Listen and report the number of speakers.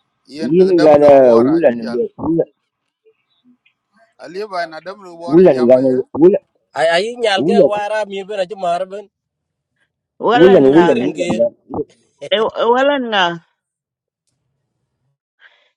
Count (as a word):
four